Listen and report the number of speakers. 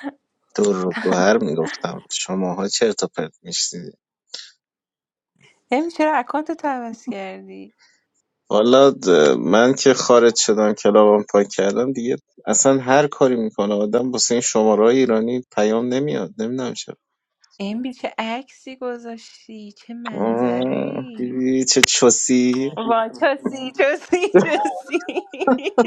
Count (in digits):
2